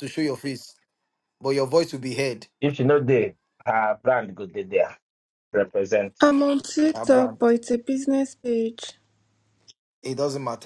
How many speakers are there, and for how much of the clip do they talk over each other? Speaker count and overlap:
3, about 5%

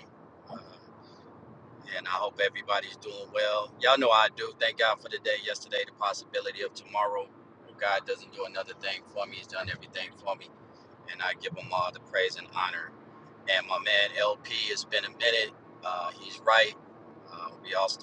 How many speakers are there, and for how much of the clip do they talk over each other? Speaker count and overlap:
1, no overlap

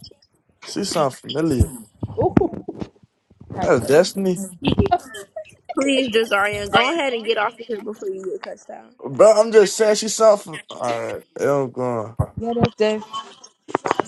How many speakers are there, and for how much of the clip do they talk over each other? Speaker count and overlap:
3, about 1%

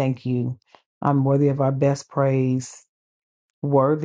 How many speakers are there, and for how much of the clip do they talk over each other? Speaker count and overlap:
1, no overlap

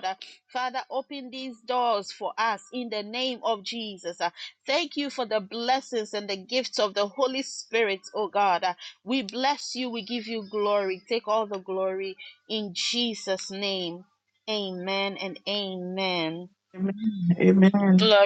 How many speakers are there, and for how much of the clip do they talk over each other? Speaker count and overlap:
2, no overlap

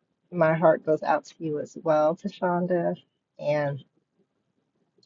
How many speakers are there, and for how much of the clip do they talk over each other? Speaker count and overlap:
1, no overlap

